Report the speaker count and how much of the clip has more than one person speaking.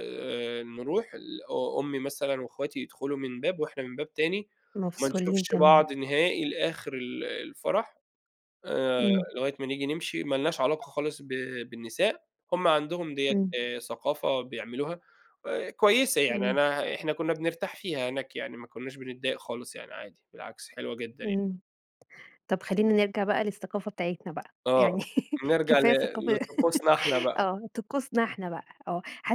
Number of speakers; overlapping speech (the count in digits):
2, about 9%